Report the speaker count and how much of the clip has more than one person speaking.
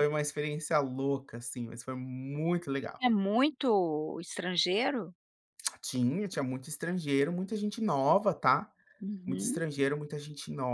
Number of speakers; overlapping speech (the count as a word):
two, about 3%